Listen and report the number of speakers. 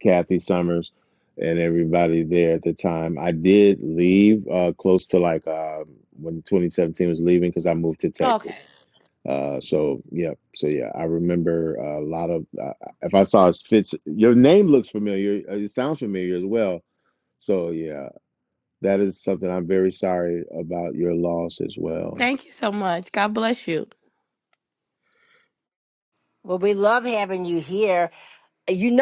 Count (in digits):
3